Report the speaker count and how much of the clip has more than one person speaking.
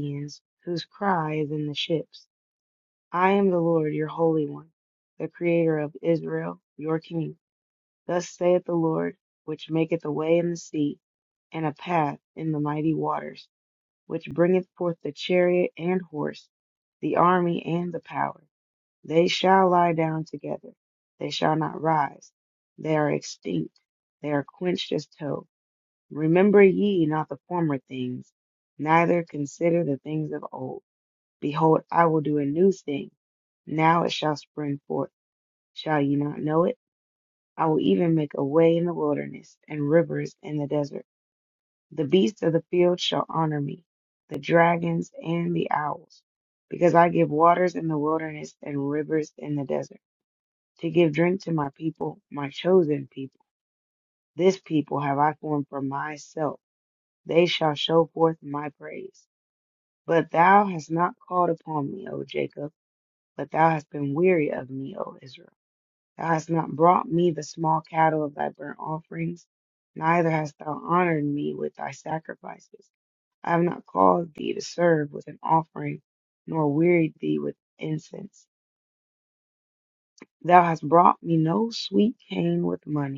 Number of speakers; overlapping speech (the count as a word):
one, no overlap